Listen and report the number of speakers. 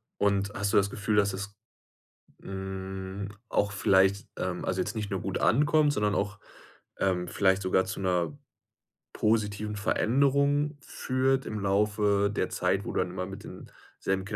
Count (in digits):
1